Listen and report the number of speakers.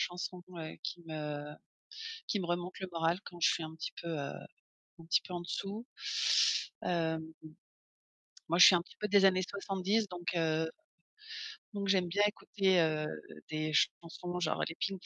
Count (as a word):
one